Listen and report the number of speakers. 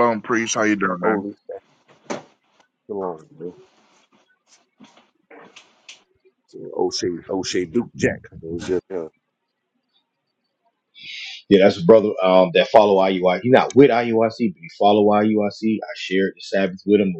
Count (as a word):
three